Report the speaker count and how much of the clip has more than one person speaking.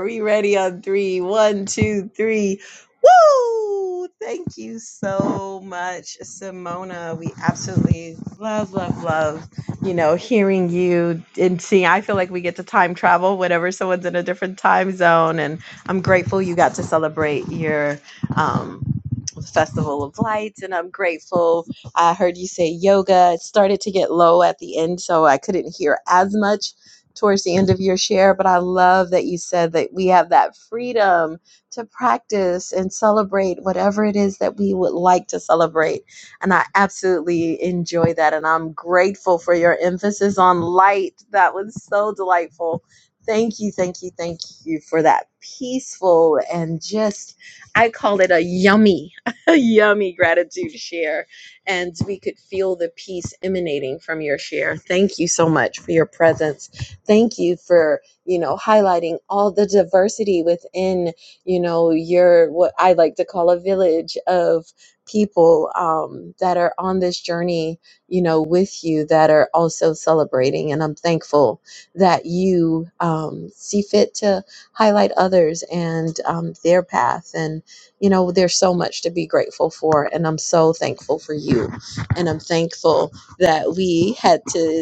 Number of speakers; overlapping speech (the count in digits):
1, no overlap